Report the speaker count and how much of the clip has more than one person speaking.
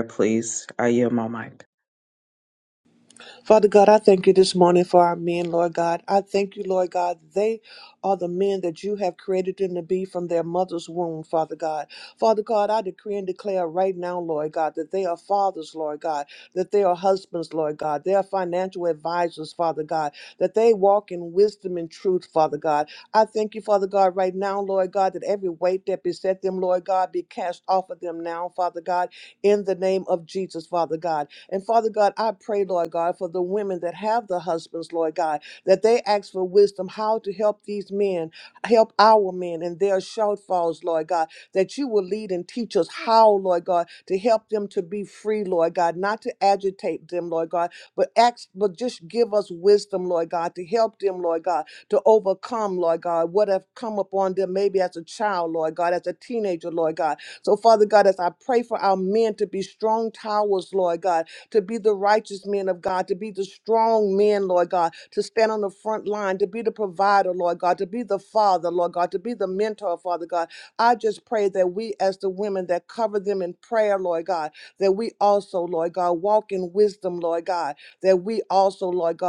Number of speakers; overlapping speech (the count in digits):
2, no overlap